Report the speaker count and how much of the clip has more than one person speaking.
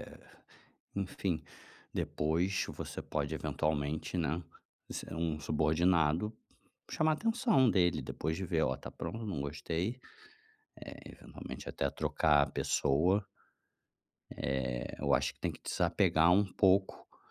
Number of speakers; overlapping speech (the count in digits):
1, no overlap